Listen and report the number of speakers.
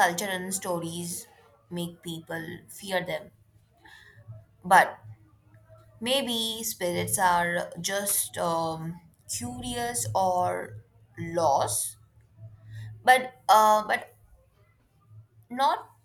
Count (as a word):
one